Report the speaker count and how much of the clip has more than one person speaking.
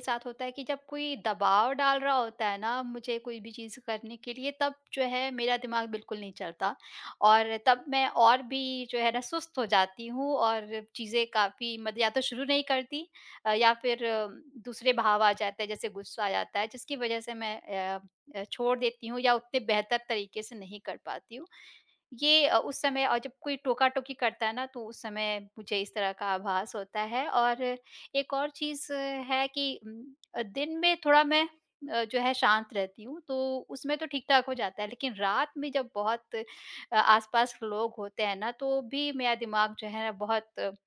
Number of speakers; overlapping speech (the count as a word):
one, no overlap